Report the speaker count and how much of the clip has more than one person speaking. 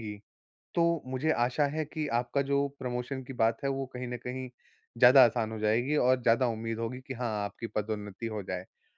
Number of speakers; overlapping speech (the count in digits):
1, no overlap